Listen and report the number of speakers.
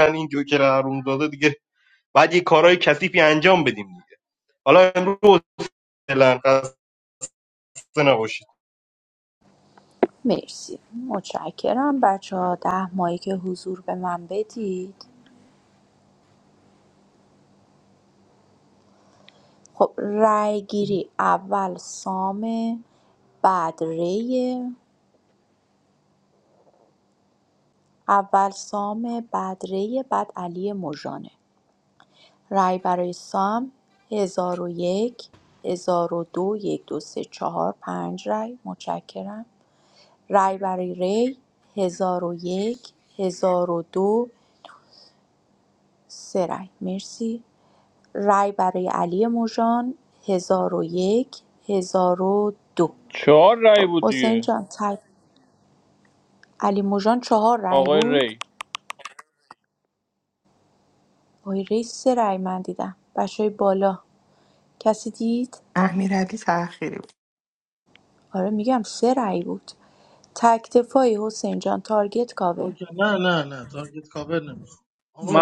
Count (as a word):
five